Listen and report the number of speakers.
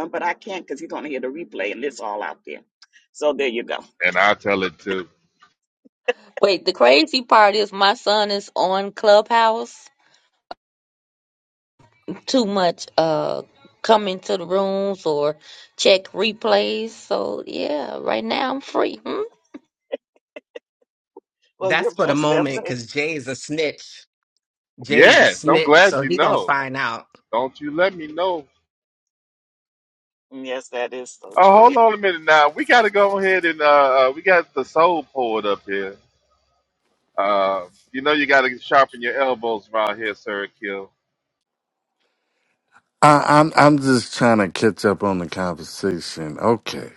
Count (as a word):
five